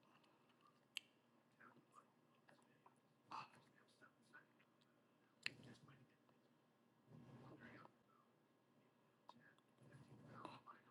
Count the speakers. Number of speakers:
zero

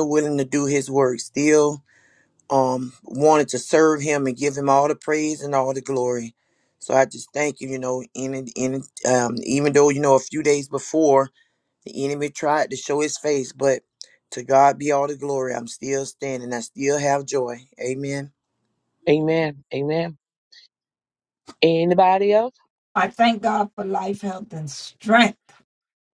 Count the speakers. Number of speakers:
three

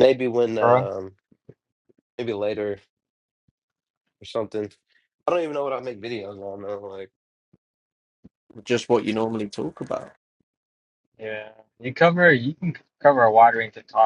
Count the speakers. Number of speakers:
three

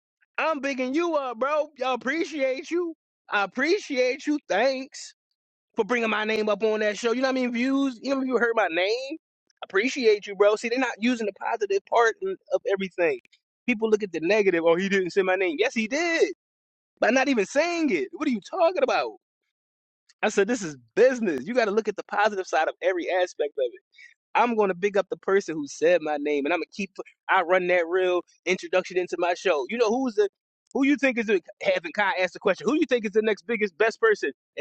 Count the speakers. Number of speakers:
one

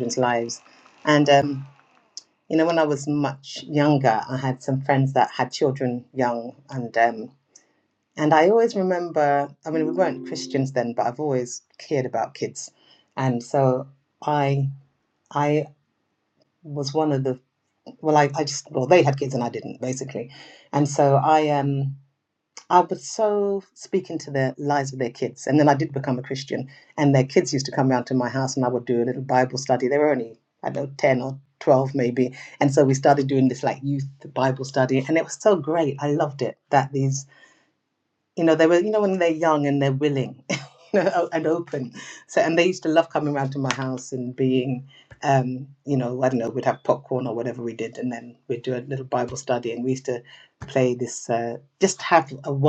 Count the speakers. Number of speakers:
one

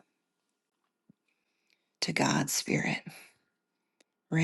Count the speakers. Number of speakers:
one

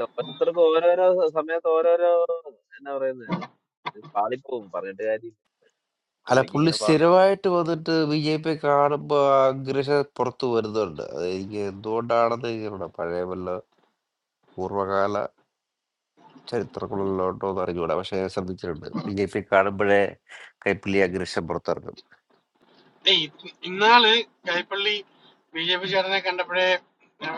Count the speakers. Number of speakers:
three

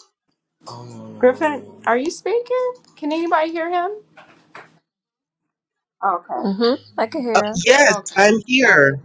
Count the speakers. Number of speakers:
three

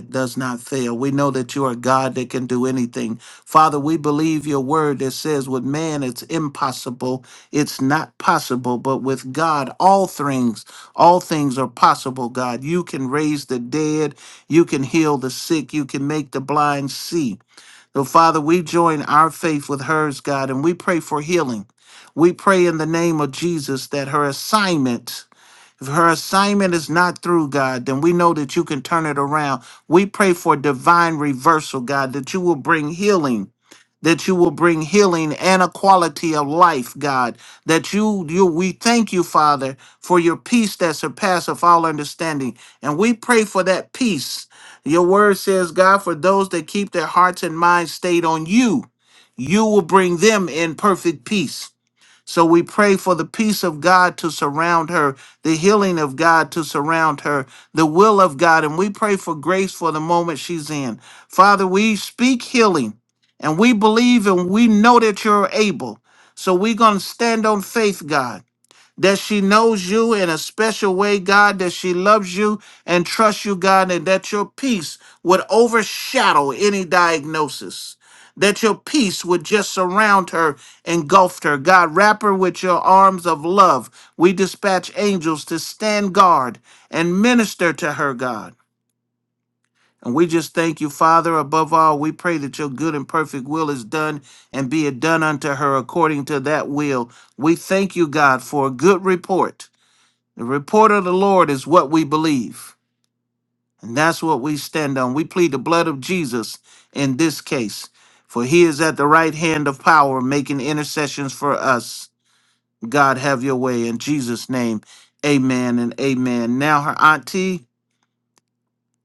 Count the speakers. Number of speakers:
one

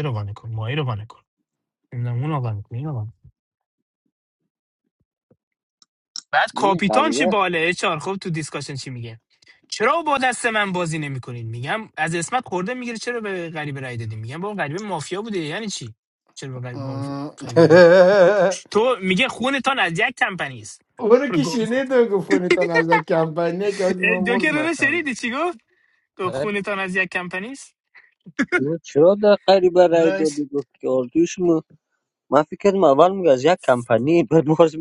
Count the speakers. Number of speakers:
three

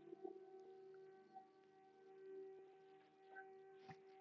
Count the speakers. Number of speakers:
zero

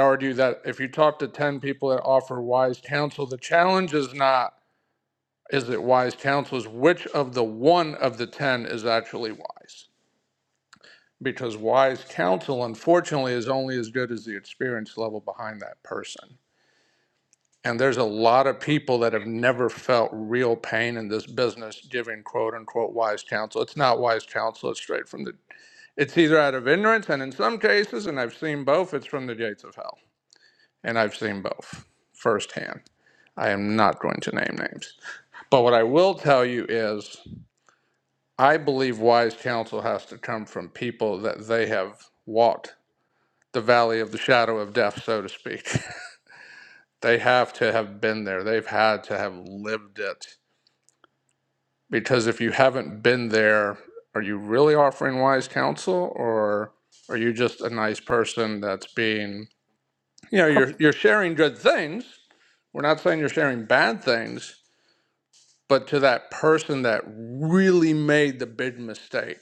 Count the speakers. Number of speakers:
one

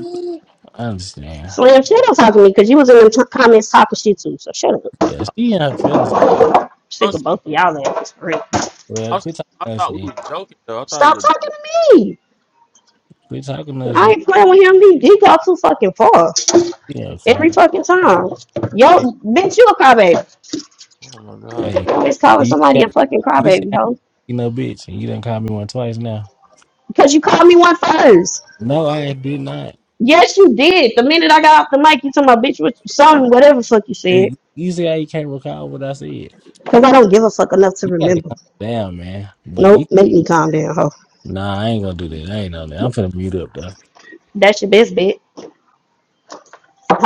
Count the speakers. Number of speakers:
three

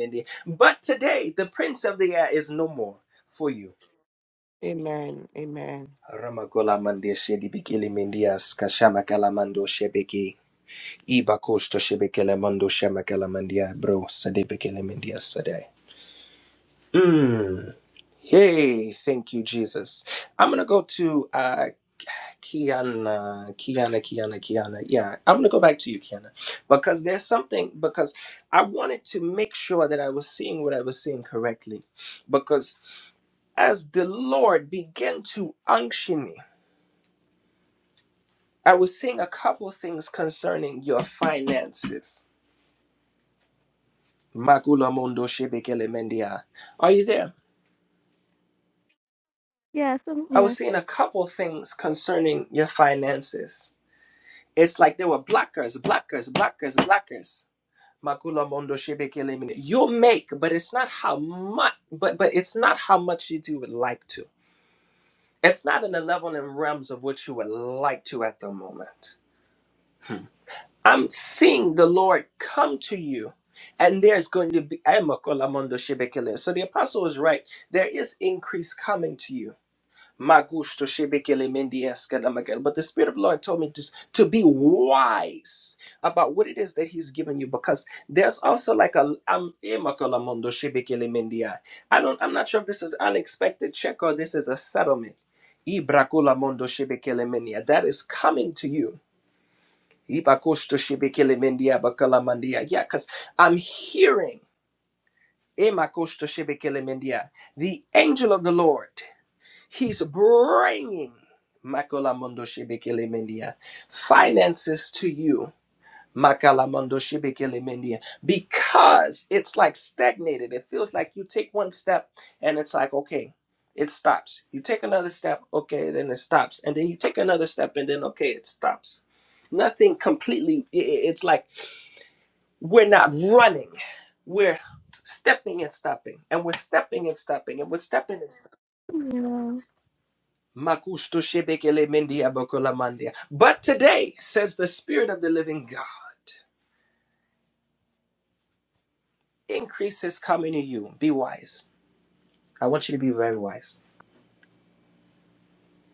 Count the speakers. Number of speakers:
three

